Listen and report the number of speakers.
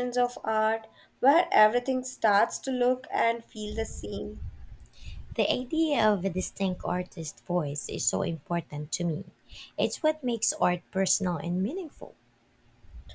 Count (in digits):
2